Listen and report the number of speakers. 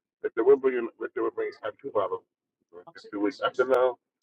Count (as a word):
one